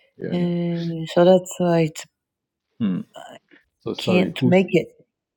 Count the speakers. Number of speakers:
2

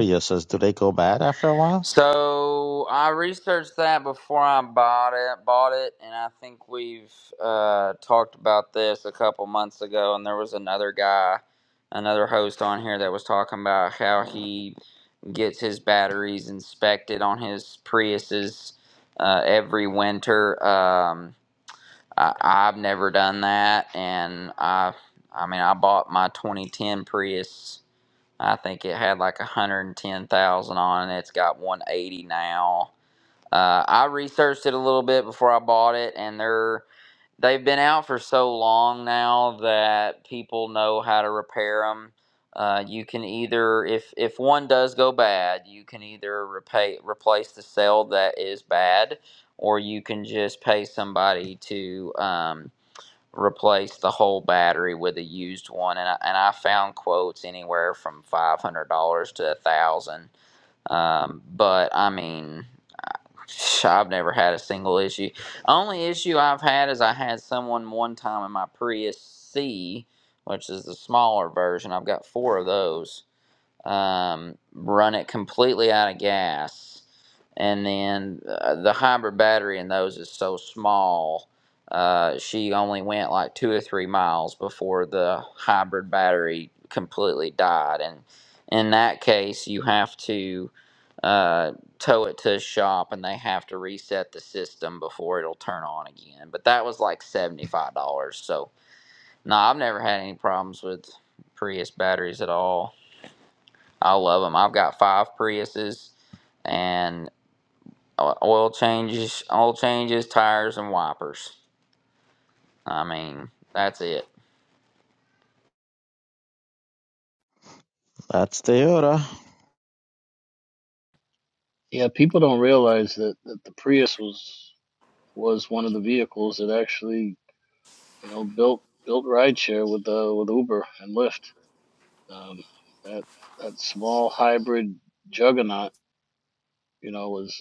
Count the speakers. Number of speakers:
3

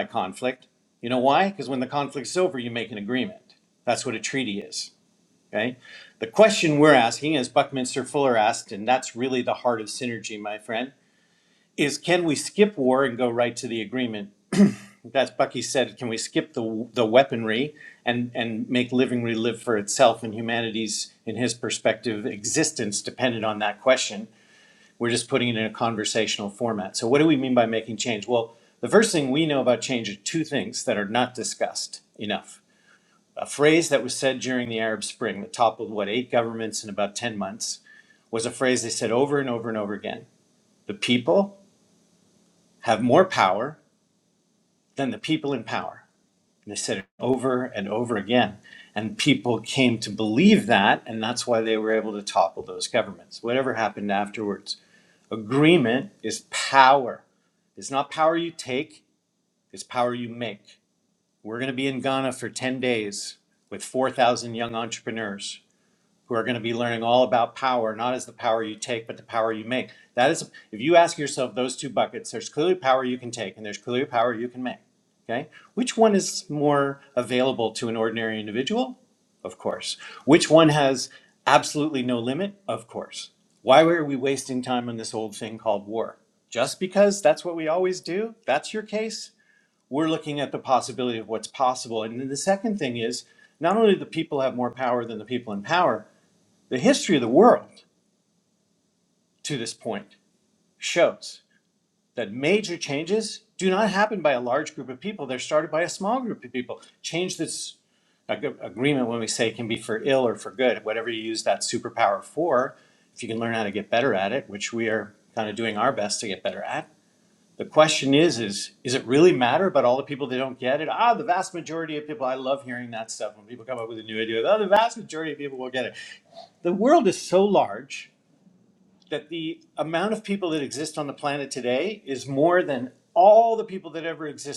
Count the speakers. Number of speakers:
1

